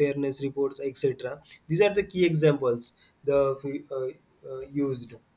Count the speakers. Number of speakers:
one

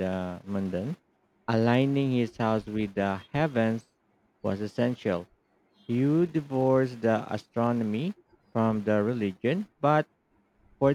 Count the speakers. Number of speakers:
one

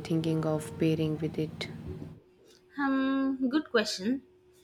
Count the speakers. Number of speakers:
two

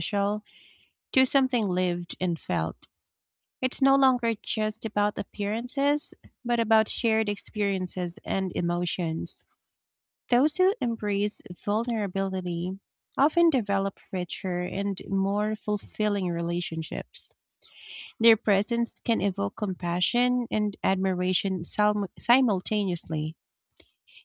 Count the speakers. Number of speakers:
one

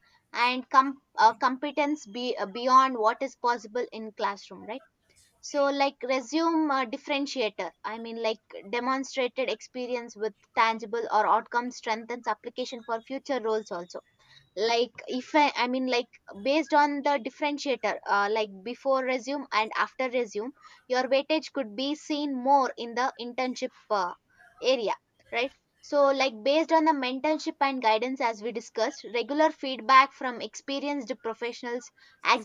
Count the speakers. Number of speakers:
one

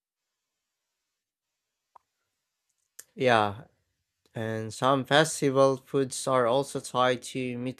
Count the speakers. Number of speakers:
one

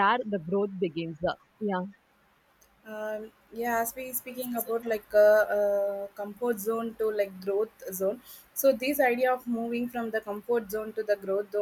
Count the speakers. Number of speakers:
two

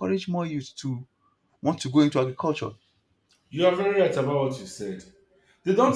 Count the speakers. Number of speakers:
two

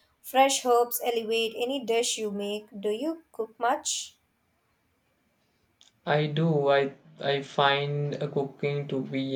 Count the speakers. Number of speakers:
two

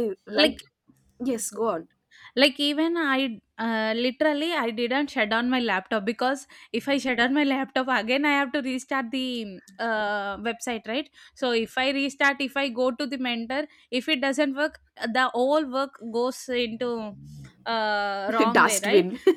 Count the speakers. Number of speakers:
two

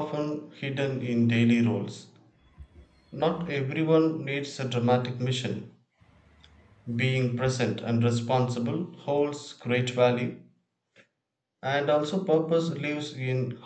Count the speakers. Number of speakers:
one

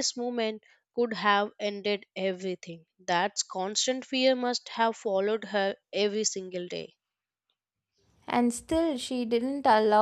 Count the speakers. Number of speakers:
two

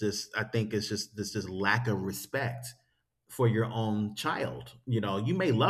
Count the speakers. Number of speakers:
one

